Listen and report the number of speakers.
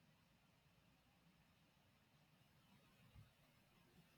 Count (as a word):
zero